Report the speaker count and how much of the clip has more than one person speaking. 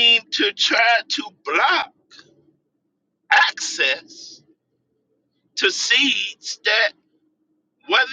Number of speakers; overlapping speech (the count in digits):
1, no overlap